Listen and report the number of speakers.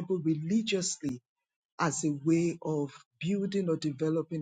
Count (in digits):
1